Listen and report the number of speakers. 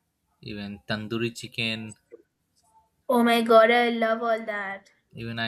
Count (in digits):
2